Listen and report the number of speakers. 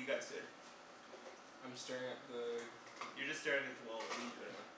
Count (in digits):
2